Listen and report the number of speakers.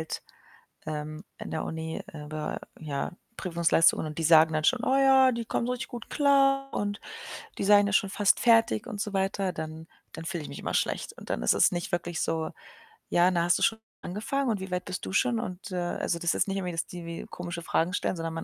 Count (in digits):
1